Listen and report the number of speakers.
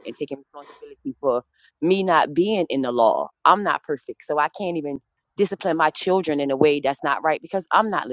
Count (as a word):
one